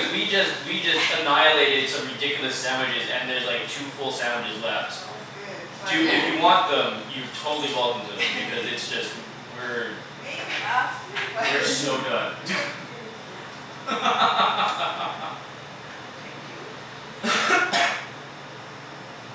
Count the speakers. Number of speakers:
one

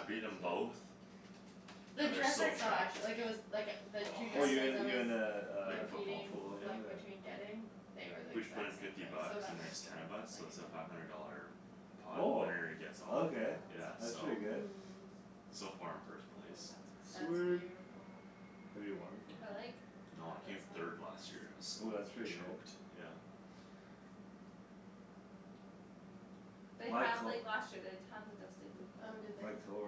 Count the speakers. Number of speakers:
four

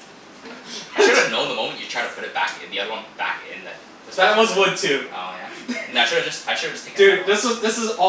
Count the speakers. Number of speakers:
two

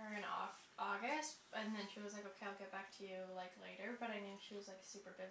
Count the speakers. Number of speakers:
one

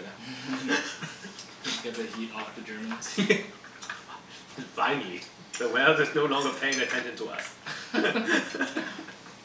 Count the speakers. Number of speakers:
two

